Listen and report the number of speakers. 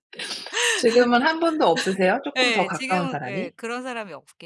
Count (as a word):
two